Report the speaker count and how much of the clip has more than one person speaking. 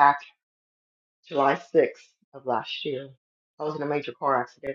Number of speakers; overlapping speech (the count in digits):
1, no overlap